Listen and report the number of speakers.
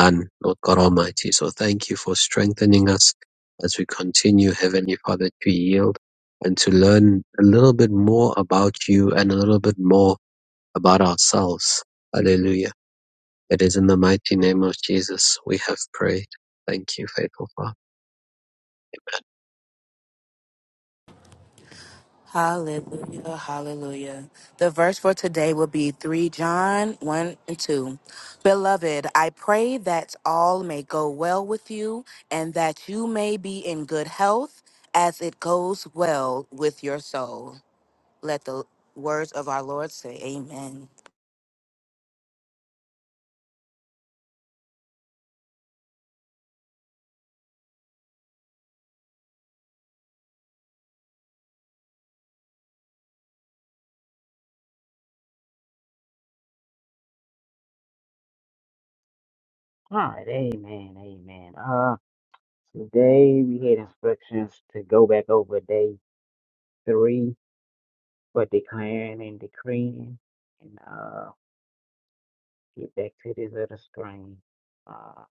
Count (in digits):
3